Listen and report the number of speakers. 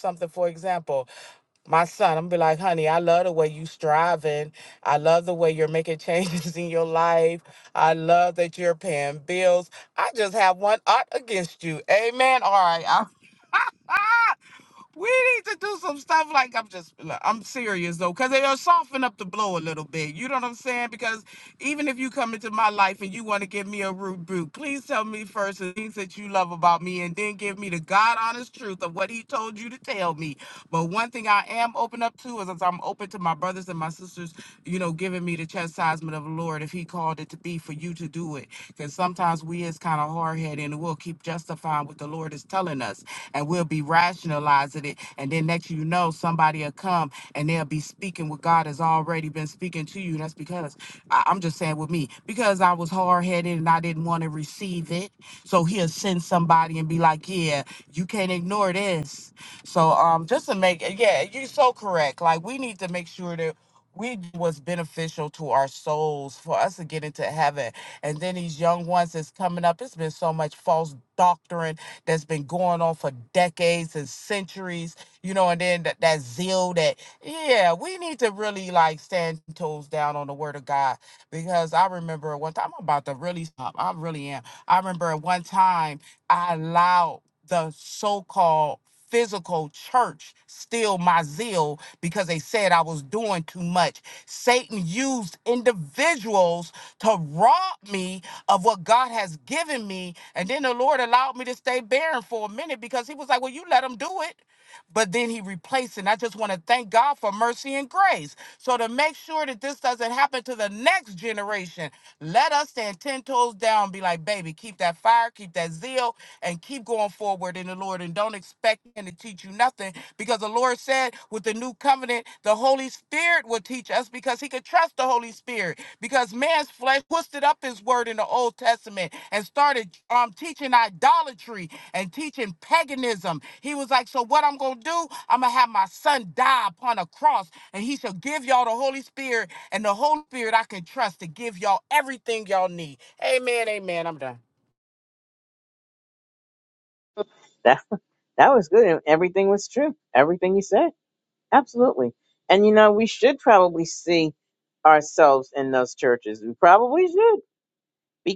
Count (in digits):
2